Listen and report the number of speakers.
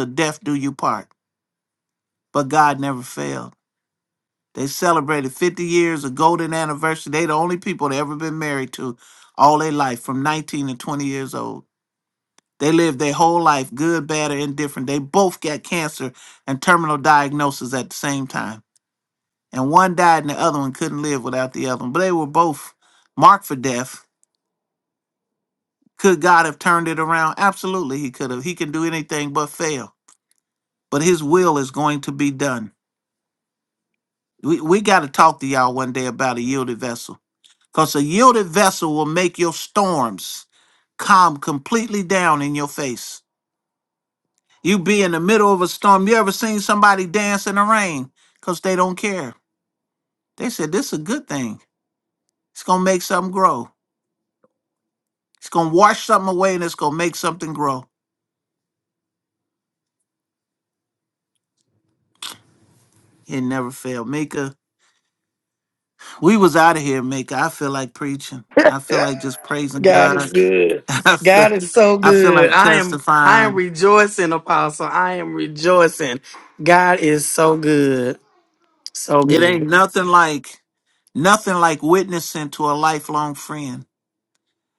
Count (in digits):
2